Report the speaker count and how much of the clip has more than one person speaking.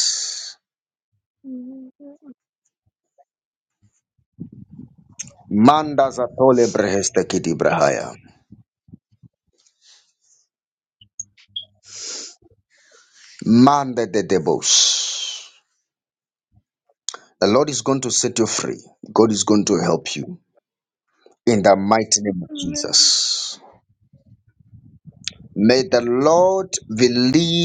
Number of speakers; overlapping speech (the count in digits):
2, about 2%